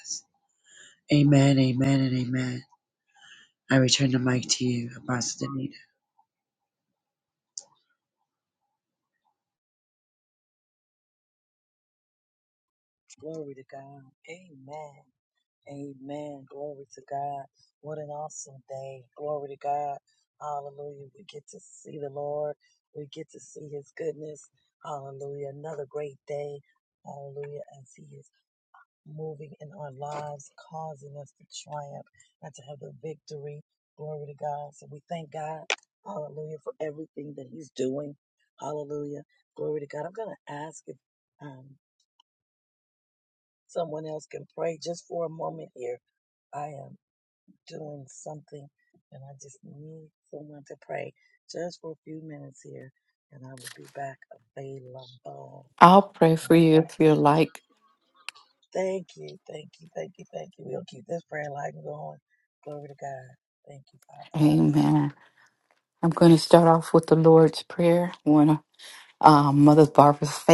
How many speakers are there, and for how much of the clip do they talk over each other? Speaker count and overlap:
three, under 1%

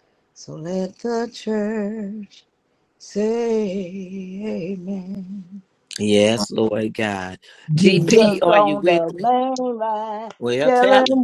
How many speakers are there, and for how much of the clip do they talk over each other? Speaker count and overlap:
three, about 18%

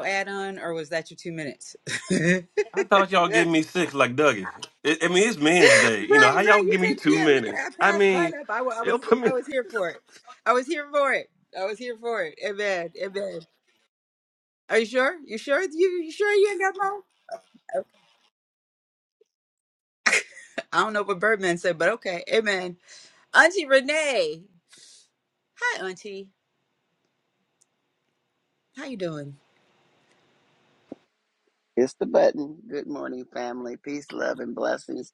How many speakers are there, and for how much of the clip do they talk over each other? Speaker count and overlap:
three, about 9%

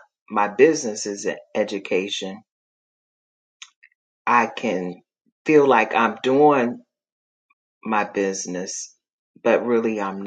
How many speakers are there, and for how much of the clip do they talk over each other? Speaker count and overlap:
one, no overlap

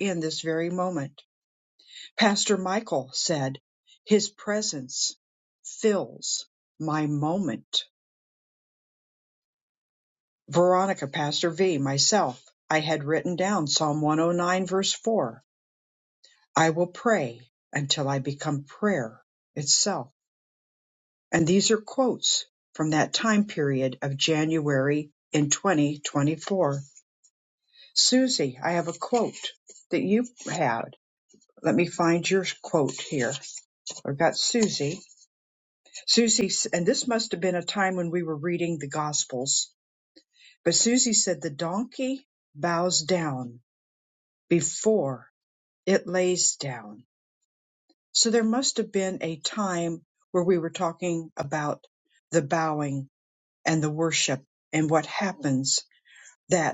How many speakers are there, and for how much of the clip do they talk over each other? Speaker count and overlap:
one, no overlap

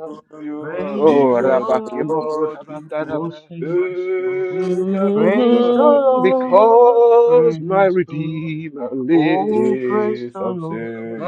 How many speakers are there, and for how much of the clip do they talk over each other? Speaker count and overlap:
three, about 65%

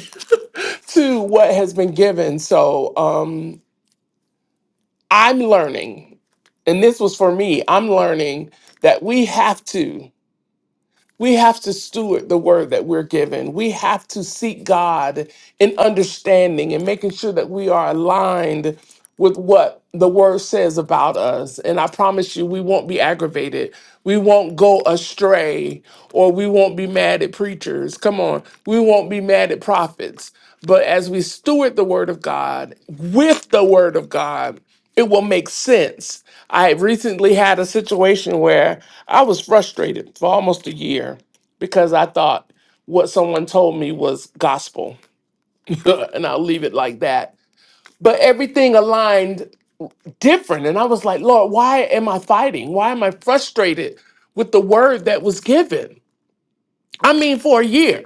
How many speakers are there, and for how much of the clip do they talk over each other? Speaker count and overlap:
one, no overlap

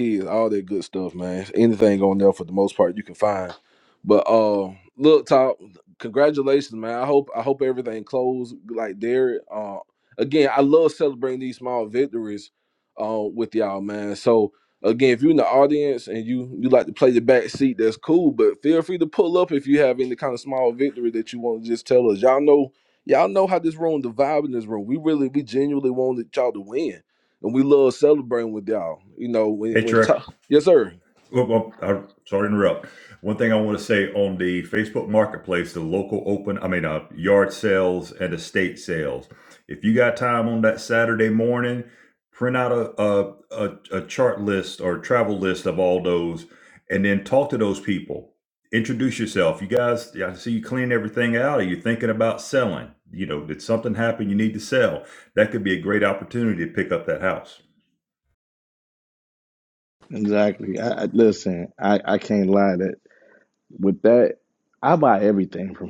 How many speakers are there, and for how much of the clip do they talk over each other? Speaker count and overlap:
three, about 1%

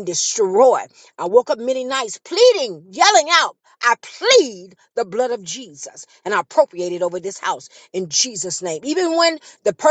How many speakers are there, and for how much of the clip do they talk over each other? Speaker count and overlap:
one, no overlap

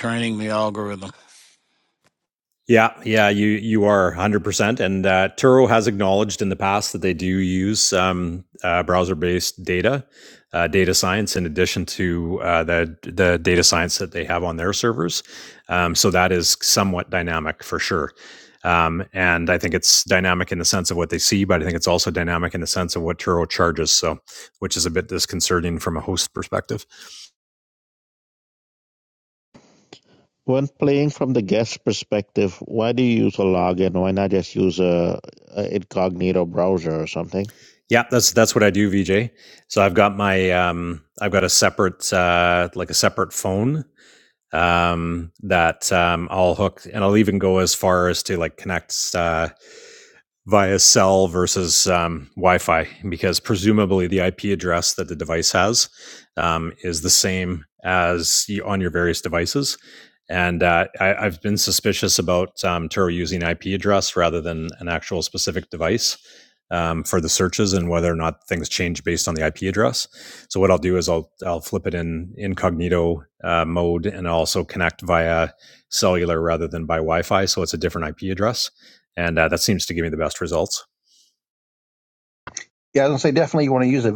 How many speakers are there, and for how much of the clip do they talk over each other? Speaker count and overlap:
four, no overlap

